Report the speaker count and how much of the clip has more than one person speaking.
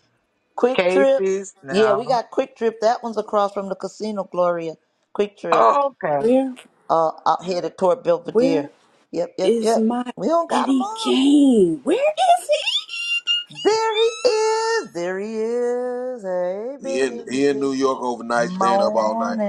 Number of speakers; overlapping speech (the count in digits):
4, about 23%